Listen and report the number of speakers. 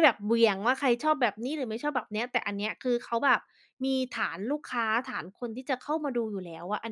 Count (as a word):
one